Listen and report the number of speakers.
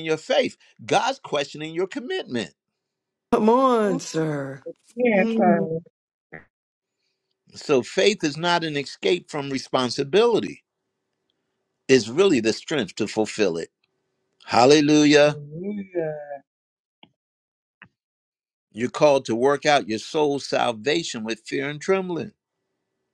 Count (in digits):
3